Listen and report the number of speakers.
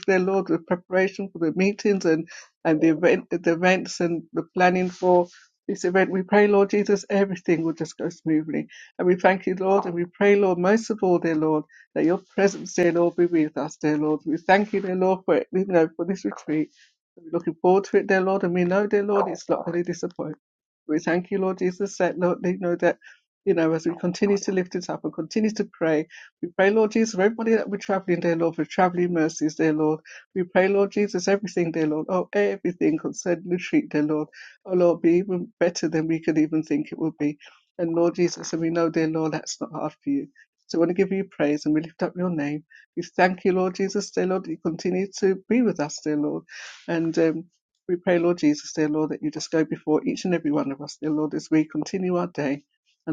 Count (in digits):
1